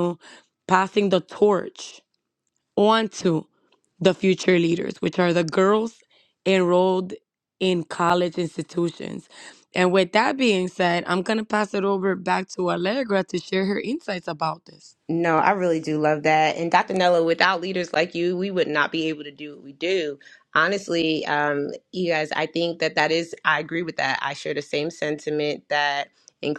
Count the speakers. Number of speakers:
2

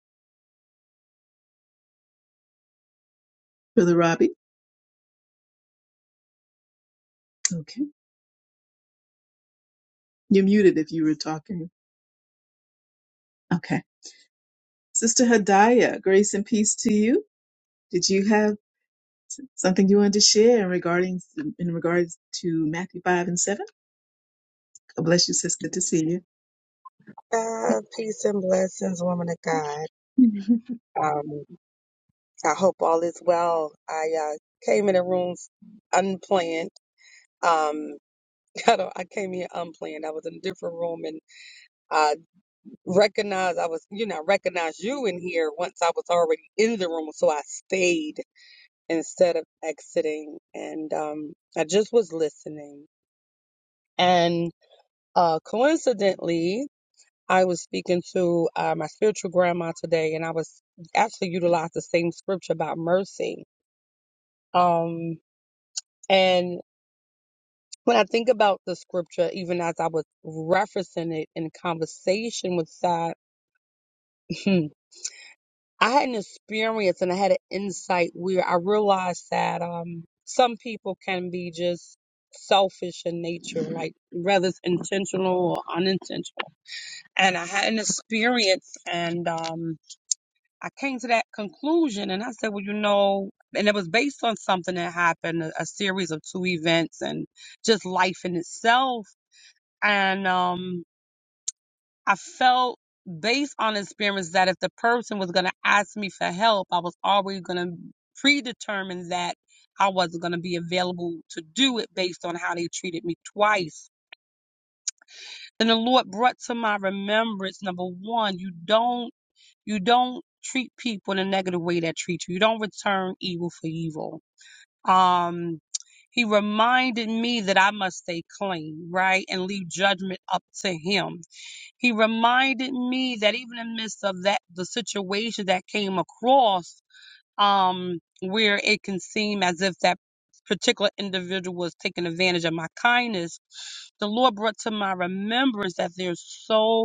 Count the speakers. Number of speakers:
2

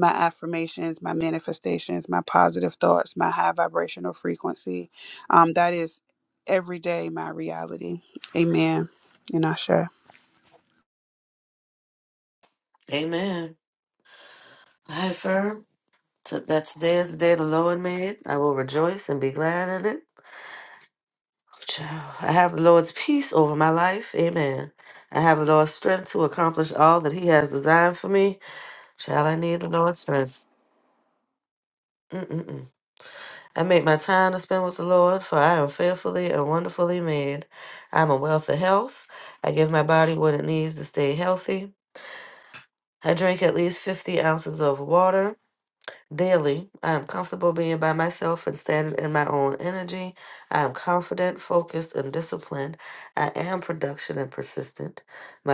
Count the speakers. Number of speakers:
2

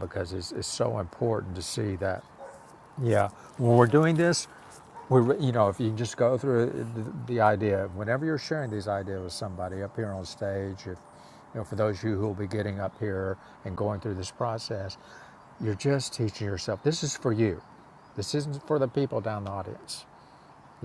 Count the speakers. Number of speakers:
1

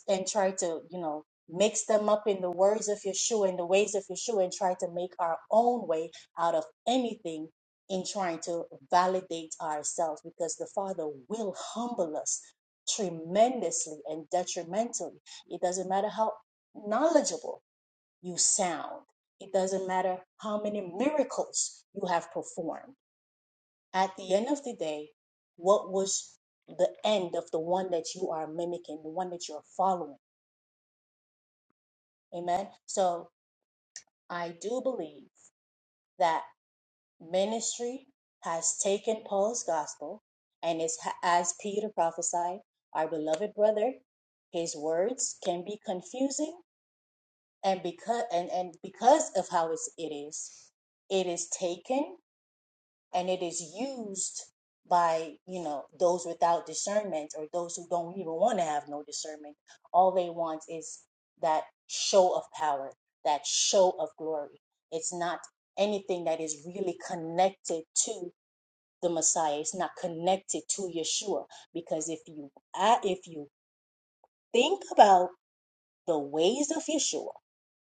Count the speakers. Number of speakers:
1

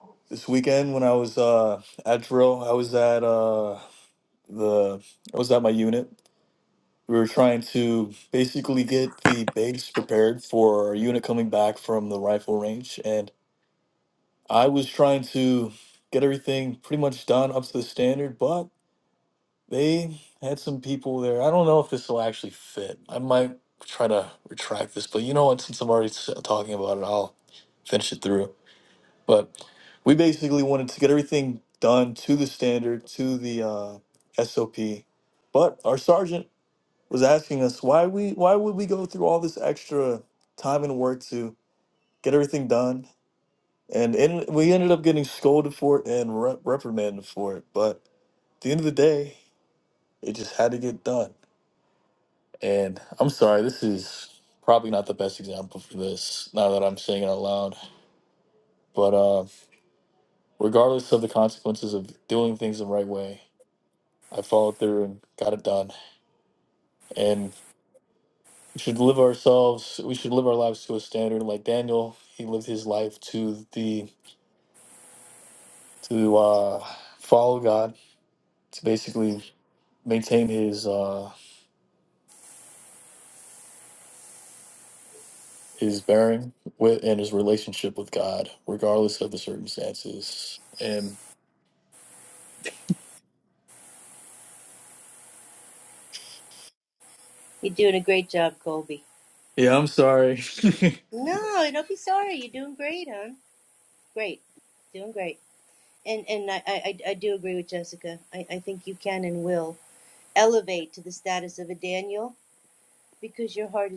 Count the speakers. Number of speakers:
2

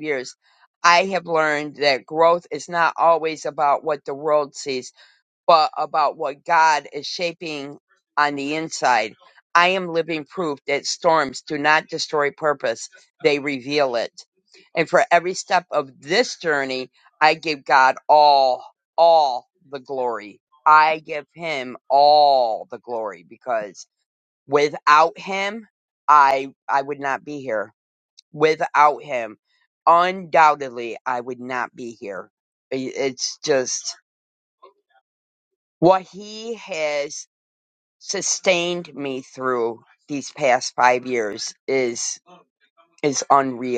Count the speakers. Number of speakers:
1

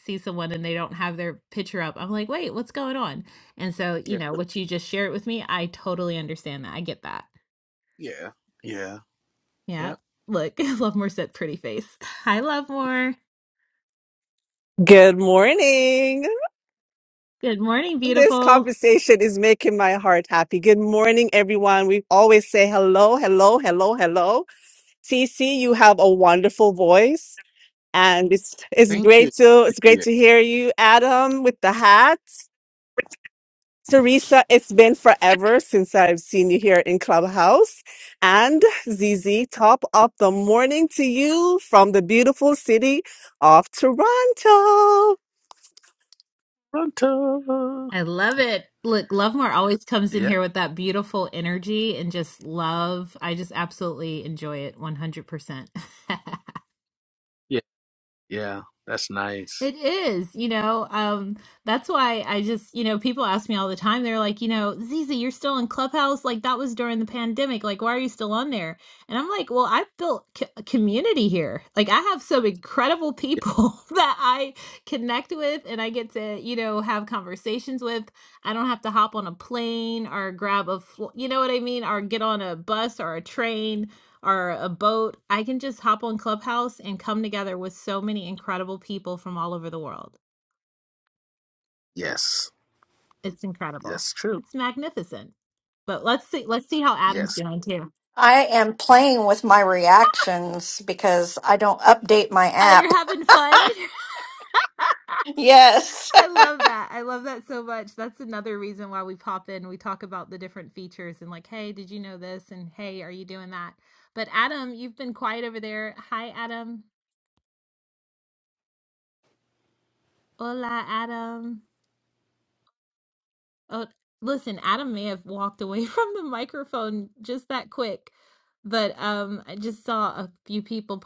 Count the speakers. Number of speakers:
4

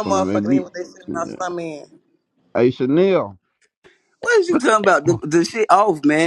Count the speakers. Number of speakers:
3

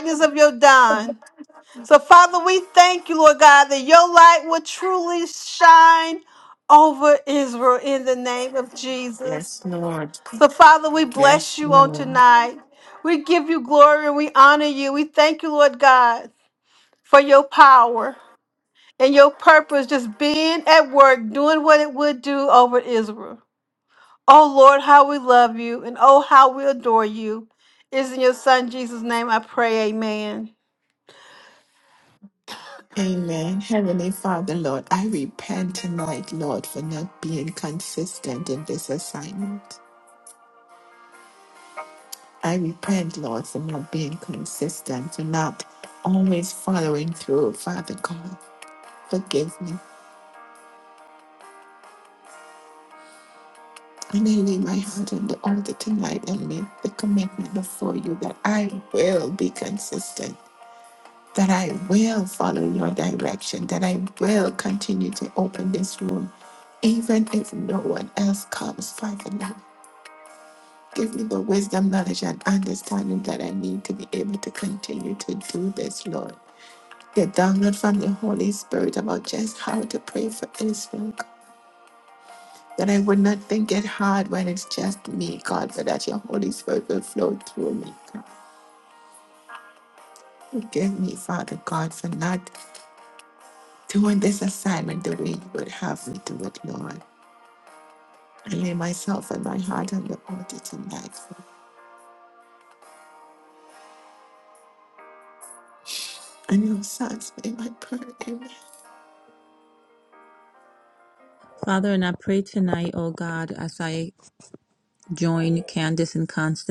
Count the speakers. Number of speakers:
3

